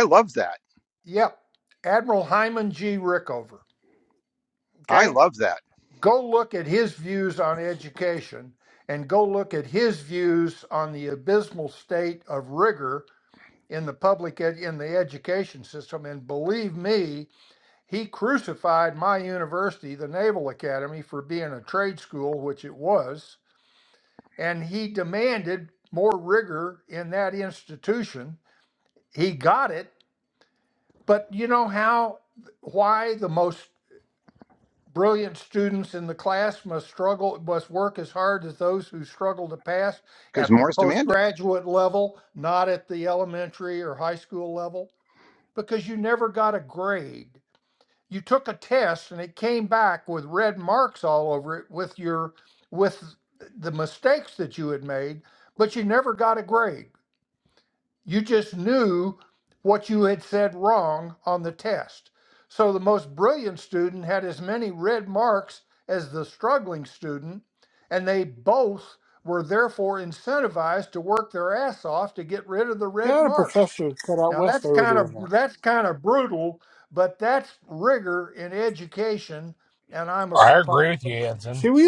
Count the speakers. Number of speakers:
4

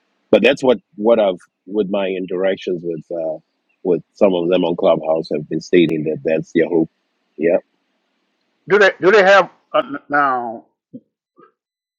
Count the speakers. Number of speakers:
2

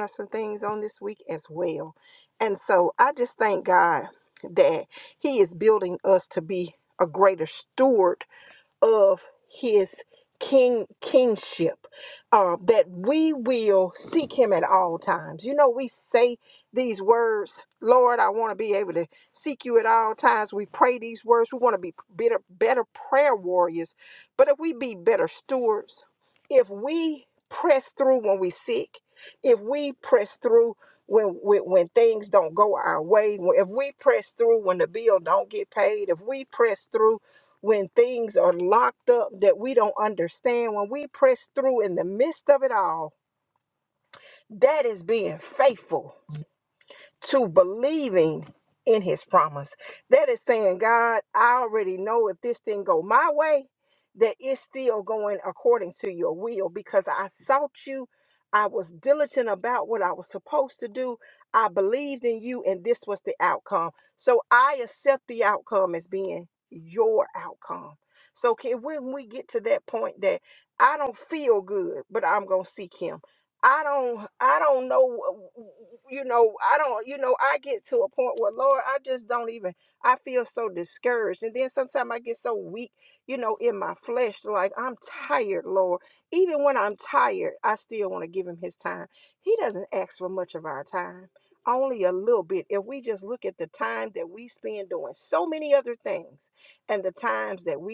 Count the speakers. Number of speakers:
1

